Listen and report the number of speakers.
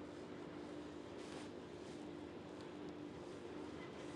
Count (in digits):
0